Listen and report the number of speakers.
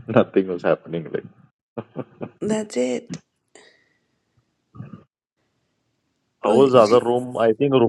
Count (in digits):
2